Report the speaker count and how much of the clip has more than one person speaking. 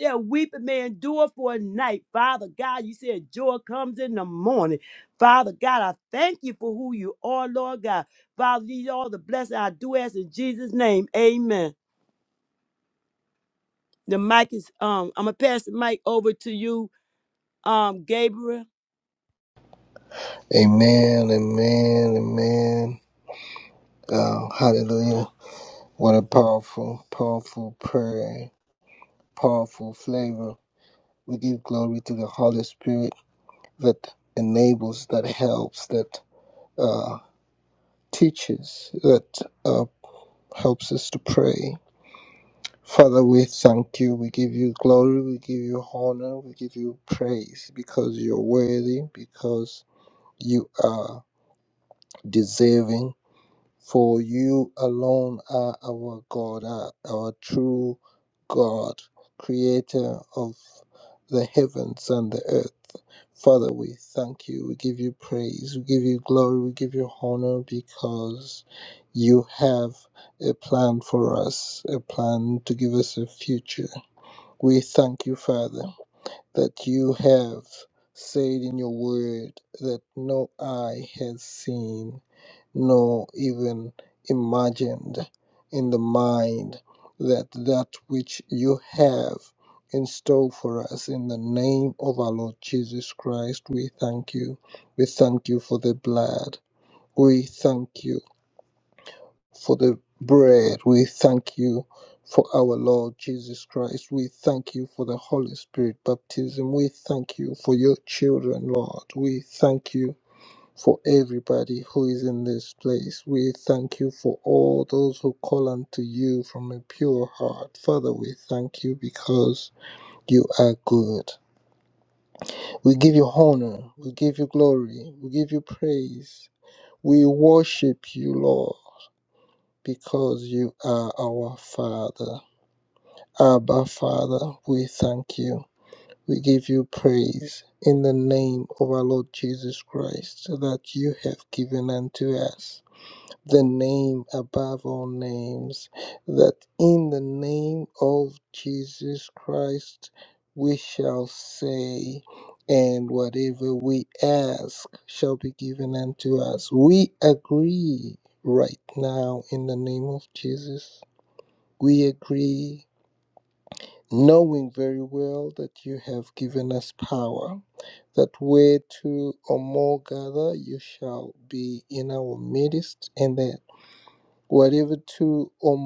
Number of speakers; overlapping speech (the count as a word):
two, no overlap